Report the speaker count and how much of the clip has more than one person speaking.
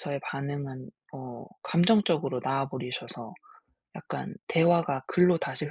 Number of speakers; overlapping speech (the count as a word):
one, no overlap